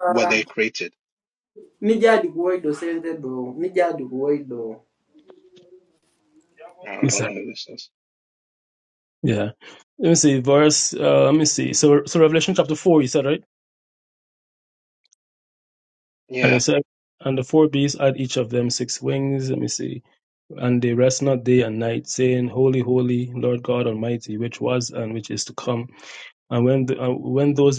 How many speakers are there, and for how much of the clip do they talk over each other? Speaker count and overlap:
3, about 2%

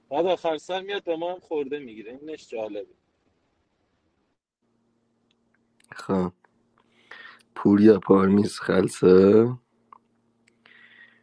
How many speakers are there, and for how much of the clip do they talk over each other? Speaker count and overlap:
2, no overlap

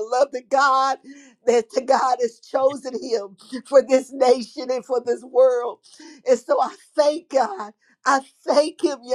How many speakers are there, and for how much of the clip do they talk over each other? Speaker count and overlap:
1, no overlap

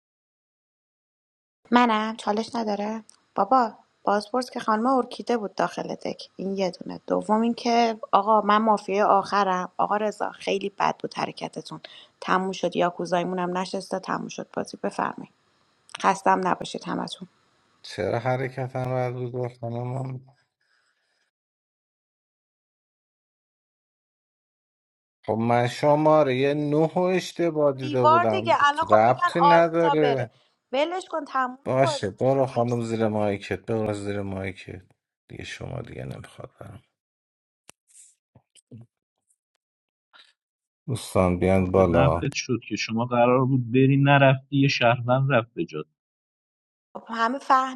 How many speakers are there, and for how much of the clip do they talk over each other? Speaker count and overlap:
3, about 7%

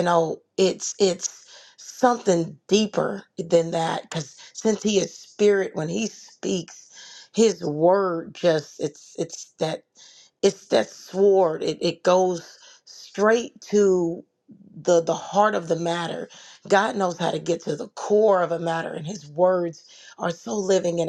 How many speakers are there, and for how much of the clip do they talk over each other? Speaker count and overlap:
1, no overlap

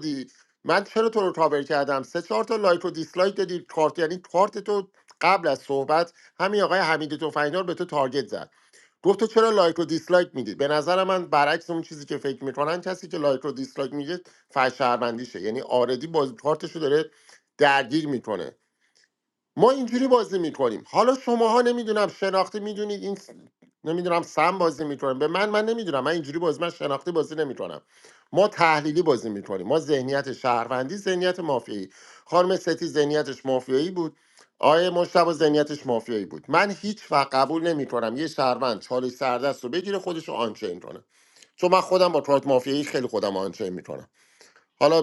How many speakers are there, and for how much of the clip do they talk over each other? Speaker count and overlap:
1, no overlap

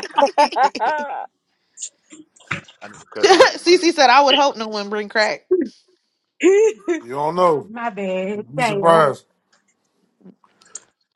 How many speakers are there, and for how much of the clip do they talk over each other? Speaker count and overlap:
4, about 9%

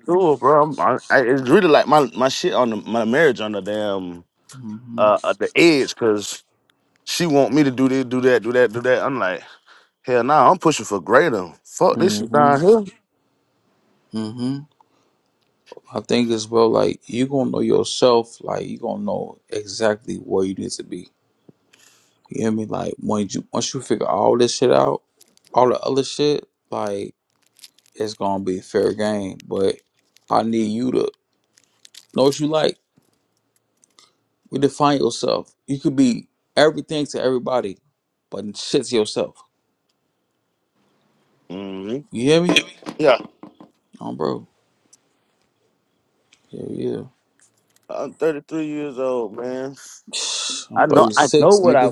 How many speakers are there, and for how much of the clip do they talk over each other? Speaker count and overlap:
2, about 4%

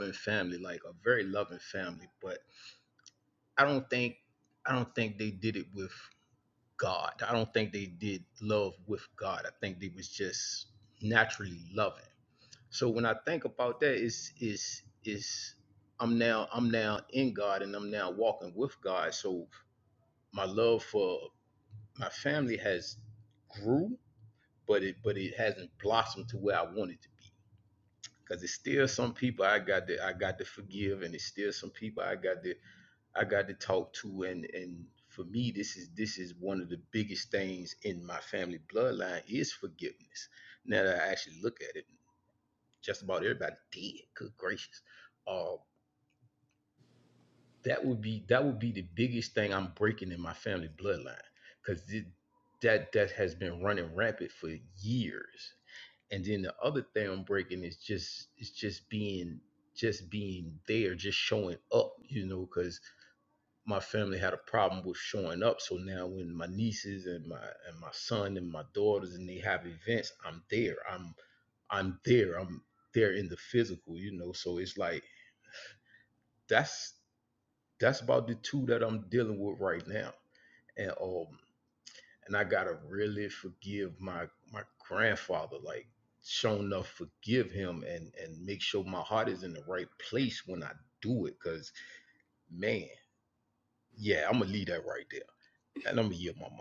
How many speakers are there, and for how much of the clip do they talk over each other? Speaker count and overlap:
1, no overlap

